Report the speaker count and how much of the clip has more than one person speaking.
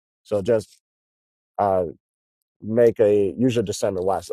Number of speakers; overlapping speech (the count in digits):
1, no overlap